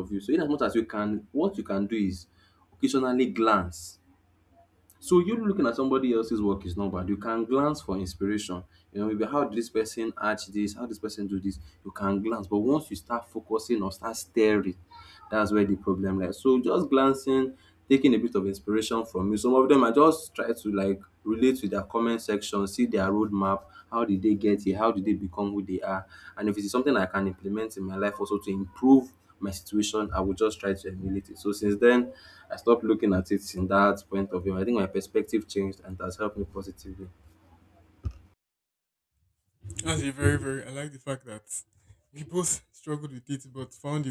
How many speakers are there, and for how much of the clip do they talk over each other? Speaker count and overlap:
two, no overlap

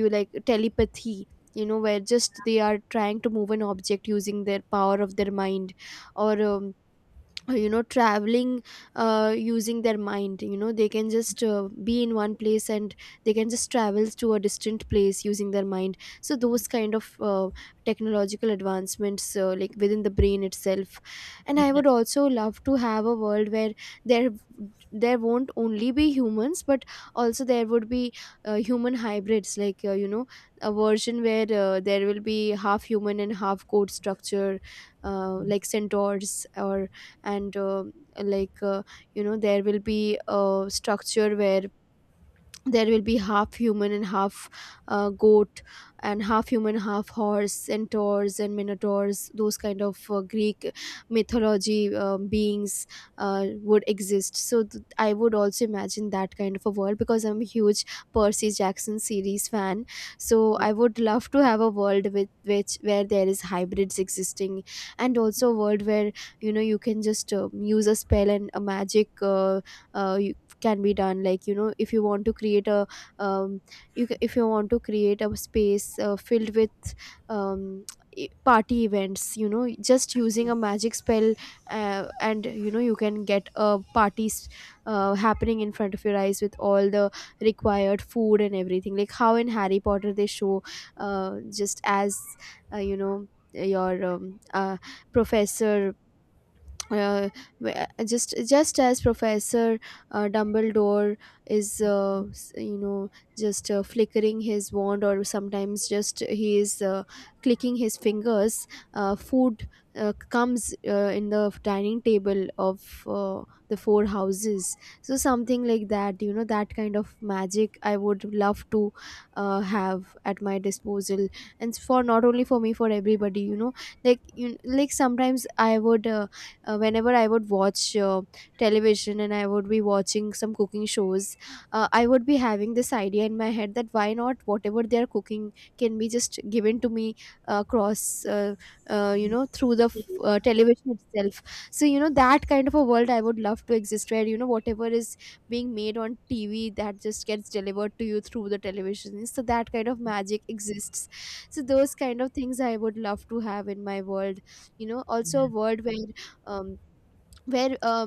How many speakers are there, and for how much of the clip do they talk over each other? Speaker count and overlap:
one, no overlap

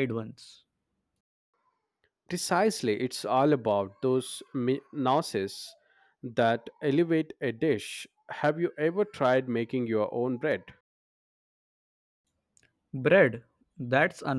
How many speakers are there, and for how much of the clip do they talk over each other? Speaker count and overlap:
two, no overlap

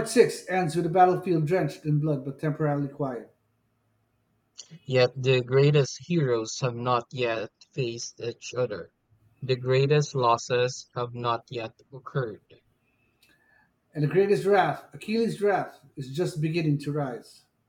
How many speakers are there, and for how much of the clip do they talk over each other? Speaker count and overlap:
two, no overlap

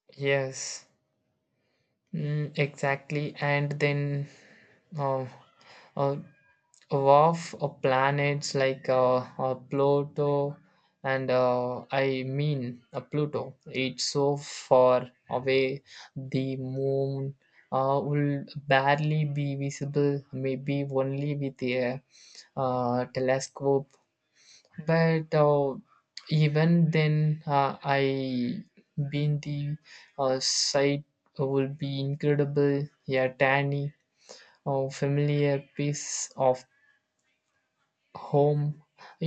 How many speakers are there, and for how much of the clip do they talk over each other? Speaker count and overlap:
one, no overlap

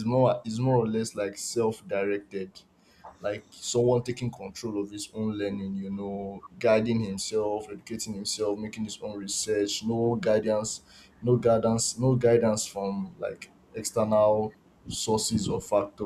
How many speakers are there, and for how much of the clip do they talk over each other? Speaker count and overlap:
one, no overlap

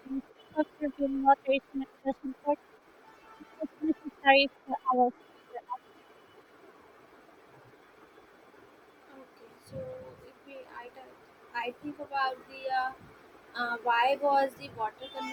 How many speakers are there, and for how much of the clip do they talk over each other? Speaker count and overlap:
two, no overlap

